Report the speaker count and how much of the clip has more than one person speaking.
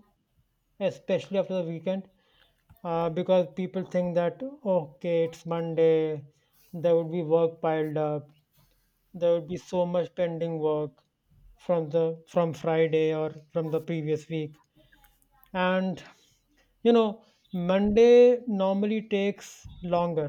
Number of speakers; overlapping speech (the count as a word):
one, no overlap